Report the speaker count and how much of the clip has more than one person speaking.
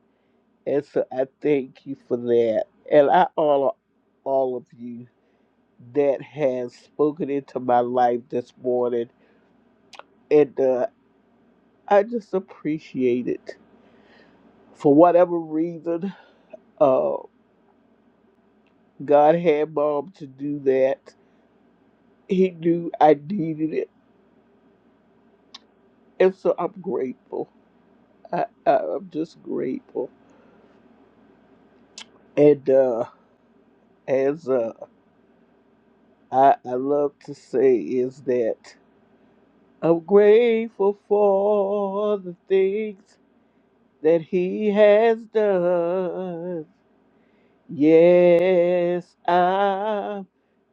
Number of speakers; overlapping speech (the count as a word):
one, no overlap